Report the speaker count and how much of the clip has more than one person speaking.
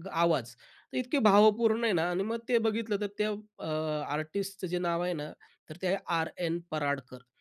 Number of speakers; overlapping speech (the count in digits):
1, no overlap